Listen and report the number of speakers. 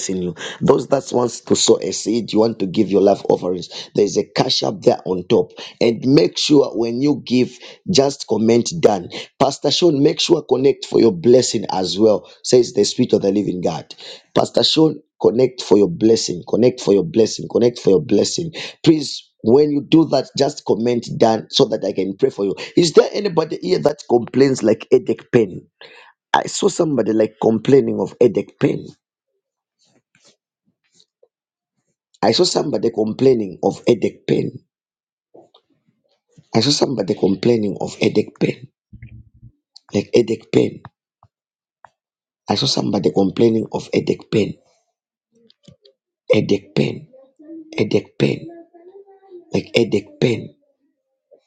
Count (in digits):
1